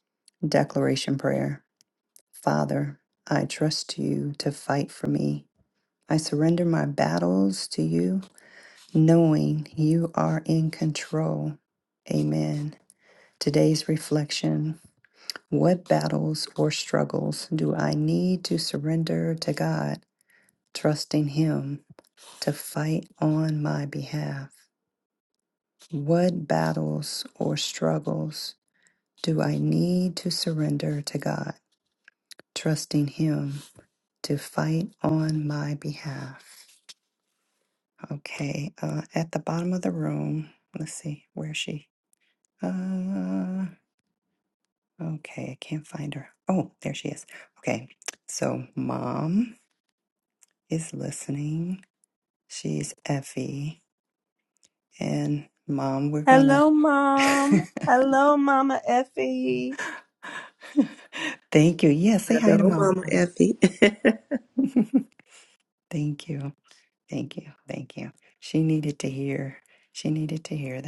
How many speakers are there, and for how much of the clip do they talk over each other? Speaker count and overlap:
3, about 1%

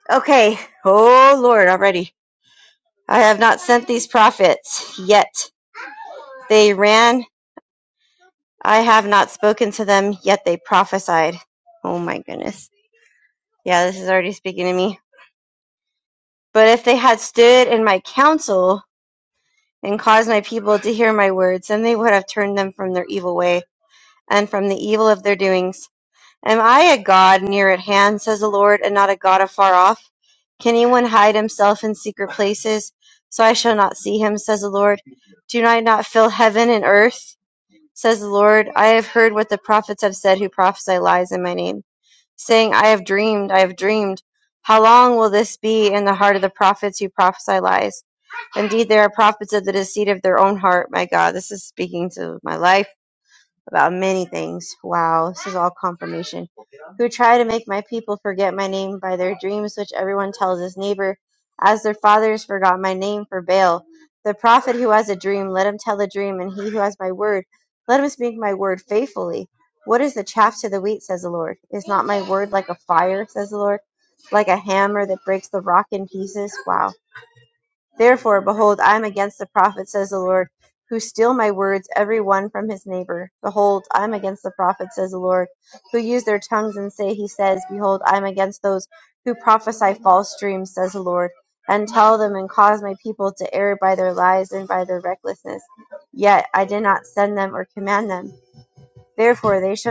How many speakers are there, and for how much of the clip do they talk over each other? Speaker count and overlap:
1, no overlap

